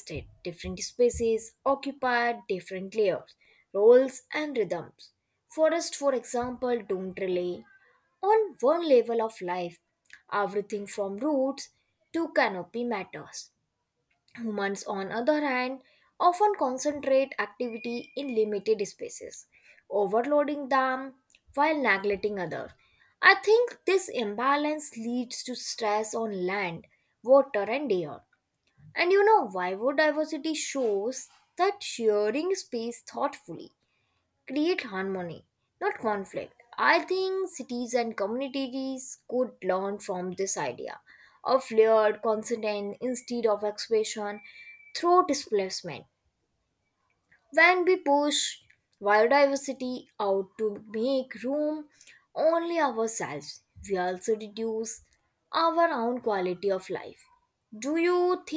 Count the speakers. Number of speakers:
one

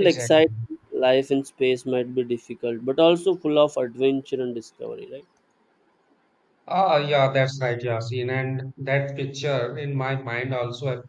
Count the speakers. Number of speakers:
two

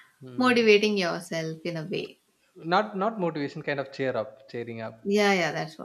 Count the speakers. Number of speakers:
two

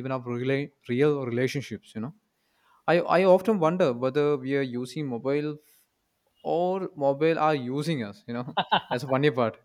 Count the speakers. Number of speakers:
one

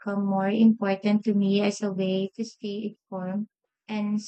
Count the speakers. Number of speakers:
one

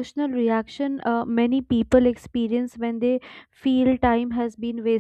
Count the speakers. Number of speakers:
one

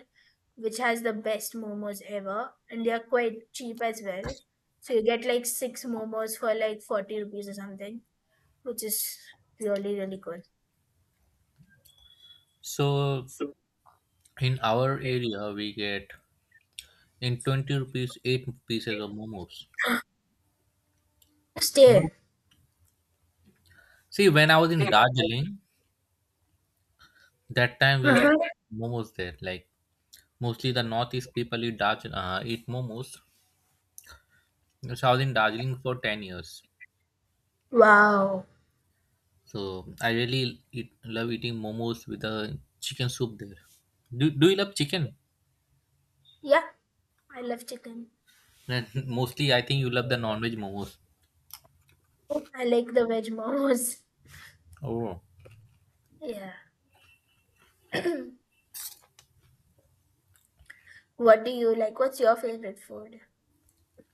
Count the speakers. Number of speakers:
two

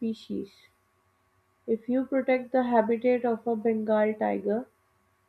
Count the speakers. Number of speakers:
one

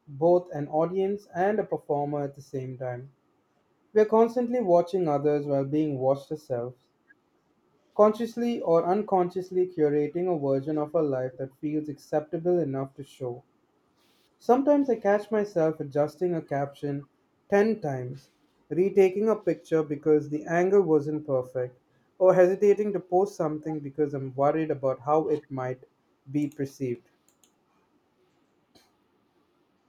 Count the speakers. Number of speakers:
one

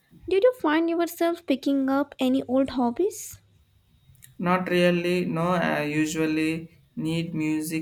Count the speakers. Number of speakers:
two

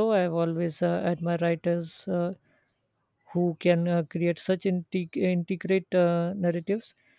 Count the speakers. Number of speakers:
one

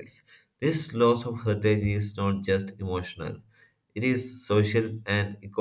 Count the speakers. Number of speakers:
one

